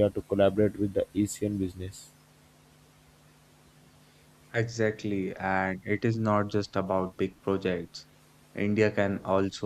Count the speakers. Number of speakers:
2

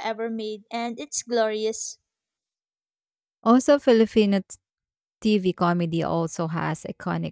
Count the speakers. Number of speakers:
2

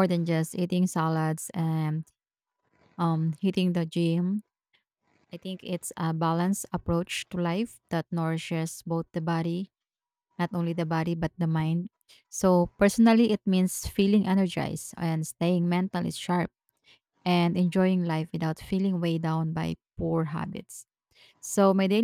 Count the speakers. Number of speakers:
1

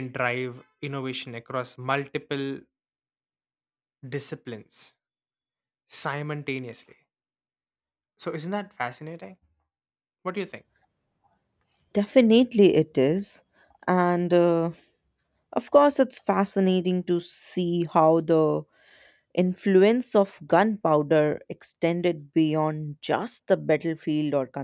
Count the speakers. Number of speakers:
2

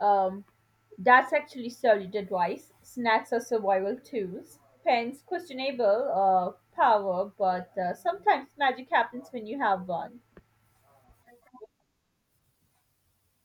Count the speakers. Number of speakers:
1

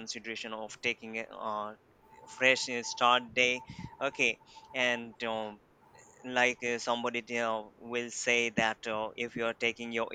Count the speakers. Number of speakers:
1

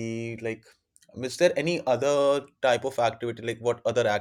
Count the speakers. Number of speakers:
1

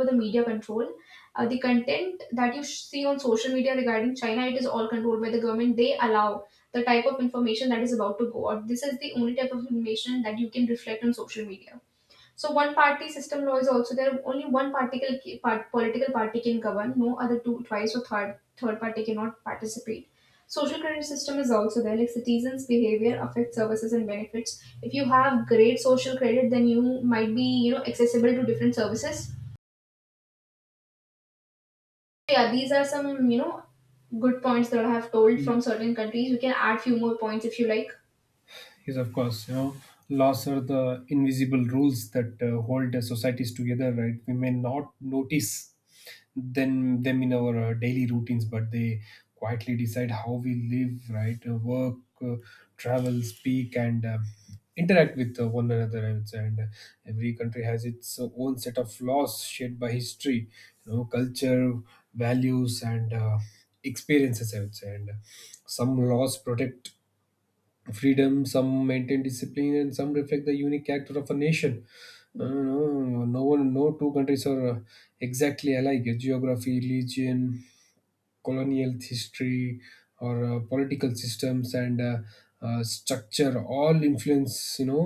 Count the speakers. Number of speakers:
2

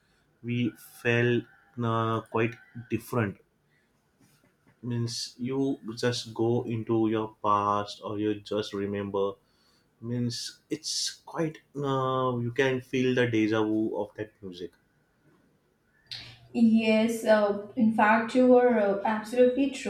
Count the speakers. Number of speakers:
2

